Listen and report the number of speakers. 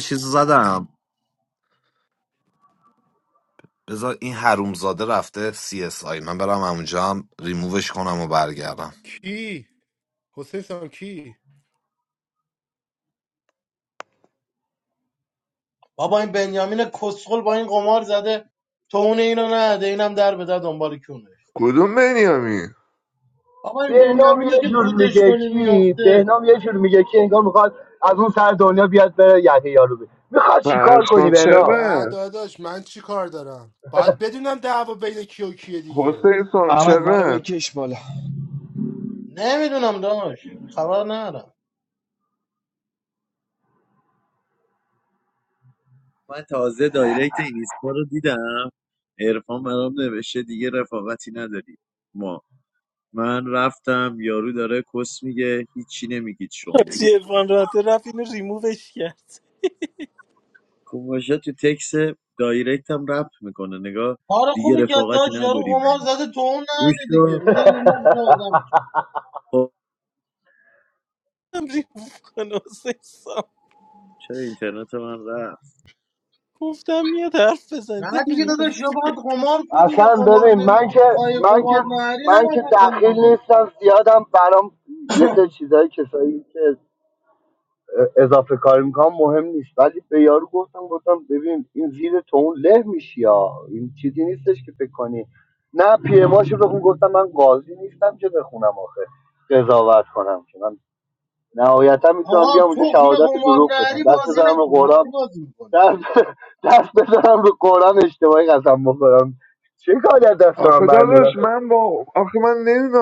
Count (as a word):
eight